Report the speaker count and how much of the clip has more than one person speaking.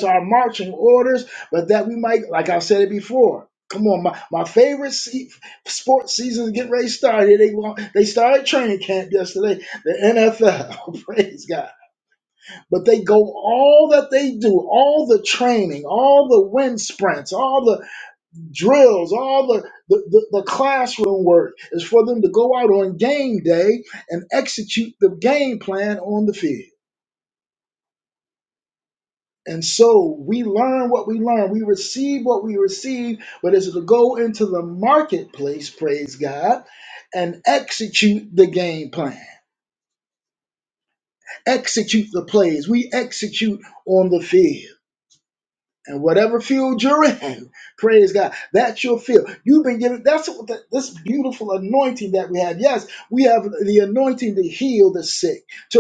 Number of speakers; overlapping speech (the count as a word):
one, no overlap